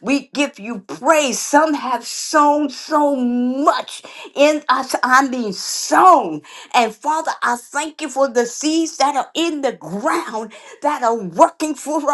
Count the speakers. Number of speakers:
one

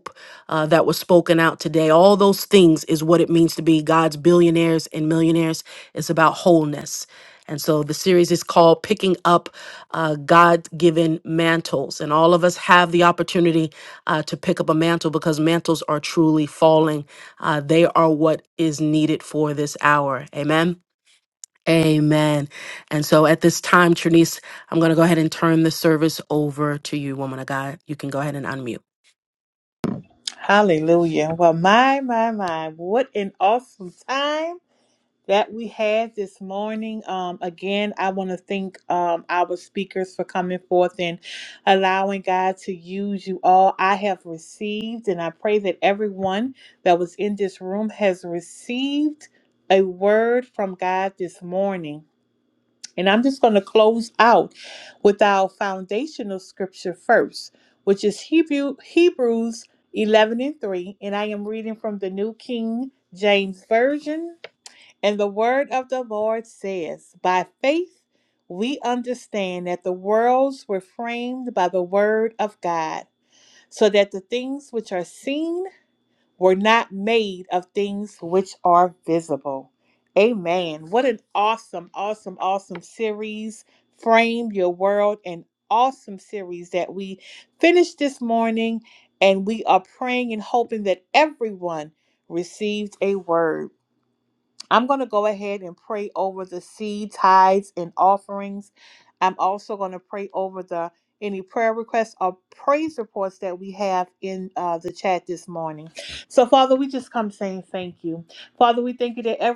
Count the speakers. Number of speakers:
two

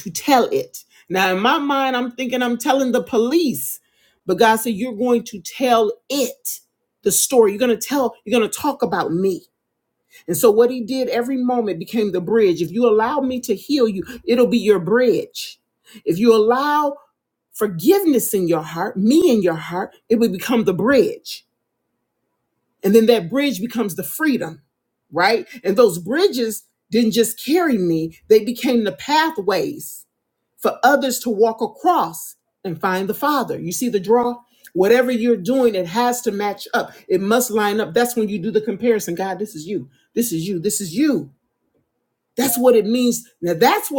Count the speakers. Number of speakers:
one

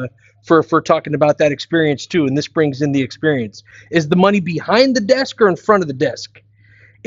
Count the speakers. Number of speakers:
one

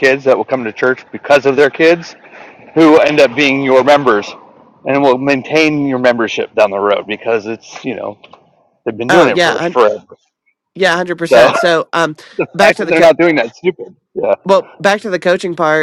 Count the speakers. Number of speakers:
two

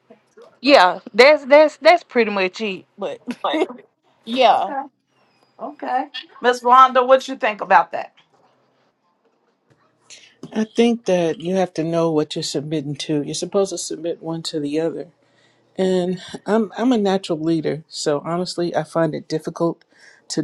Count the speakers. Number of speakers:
three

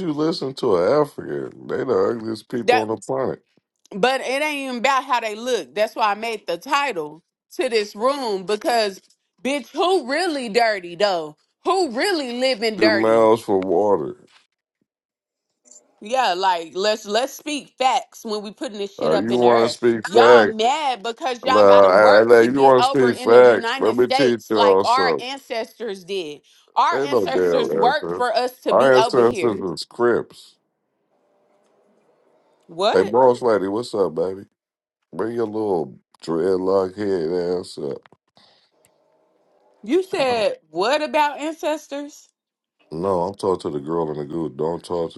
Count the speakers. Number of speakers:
two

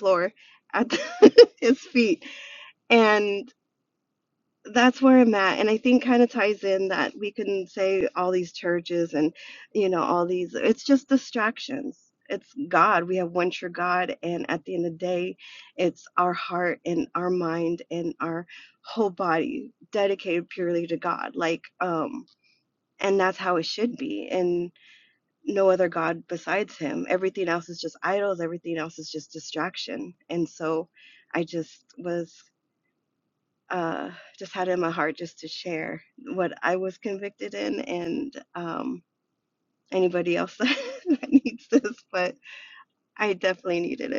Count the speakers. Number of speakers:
one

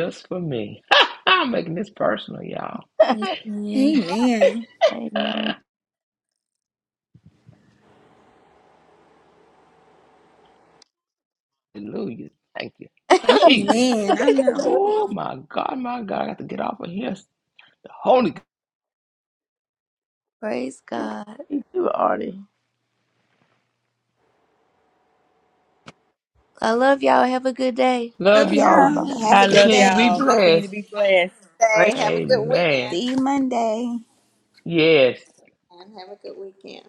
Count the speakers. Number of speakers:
six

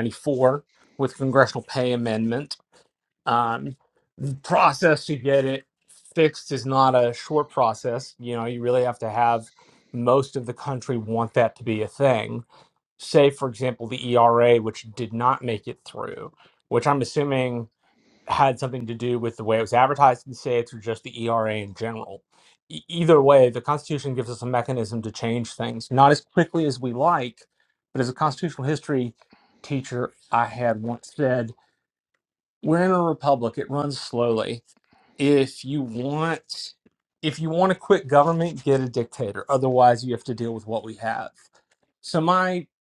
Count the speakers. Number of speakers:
one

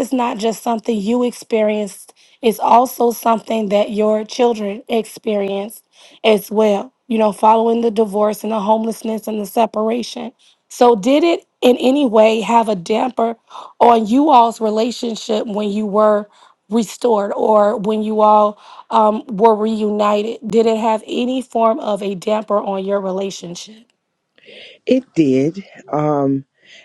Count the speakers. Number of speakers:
two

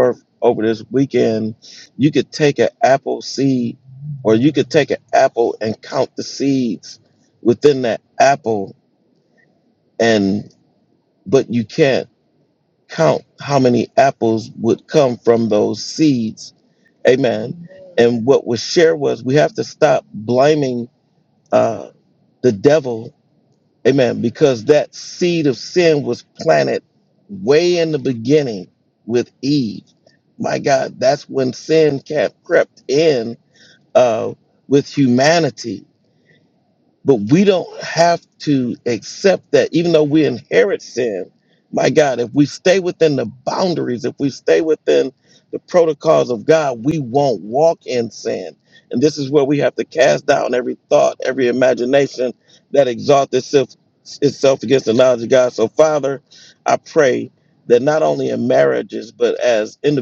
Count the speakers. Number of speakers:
one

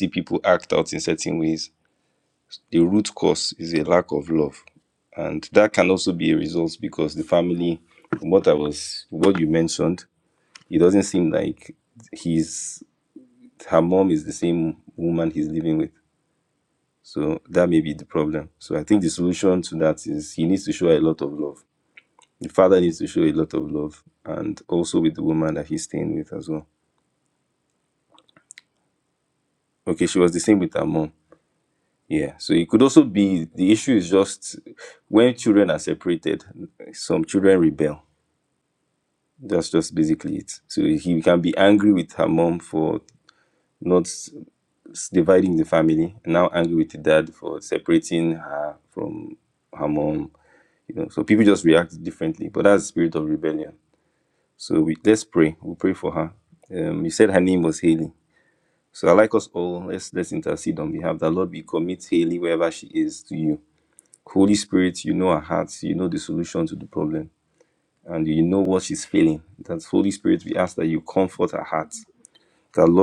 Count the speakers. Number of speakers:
one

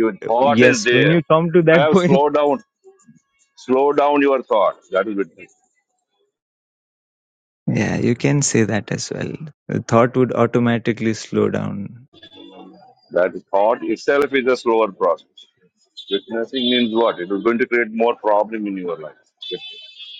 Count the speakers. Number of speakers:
two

